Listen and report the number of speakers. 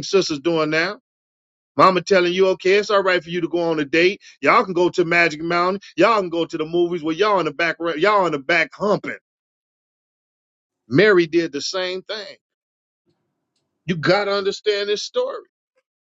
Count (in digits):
1